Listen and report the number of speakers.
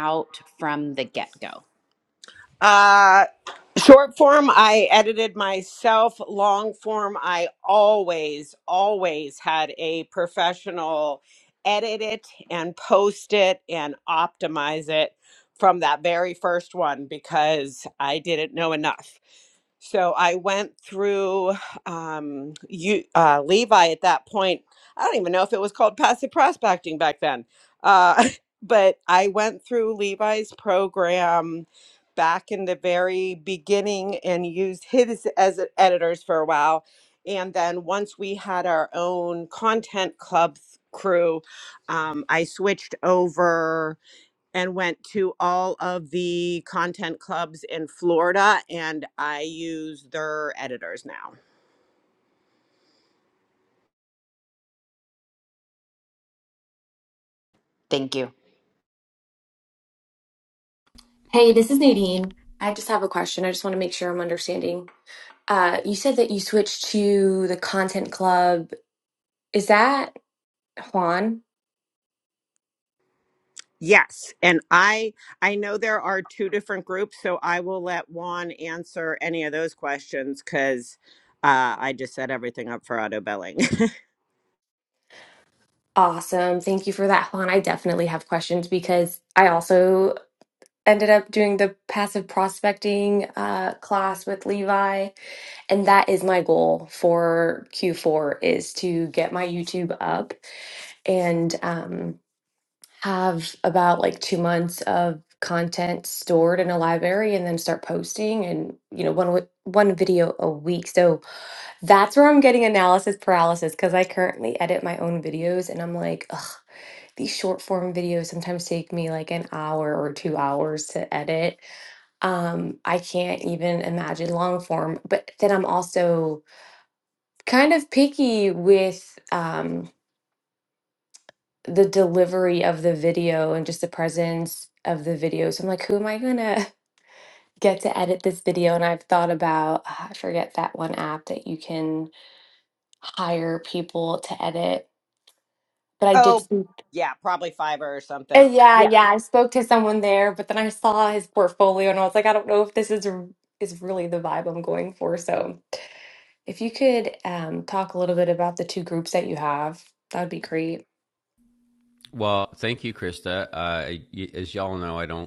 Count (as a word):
four